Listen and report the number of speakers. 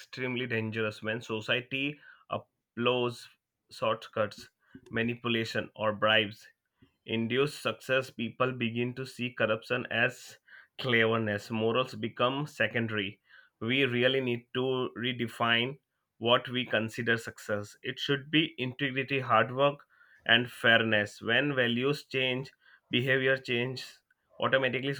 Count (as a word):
one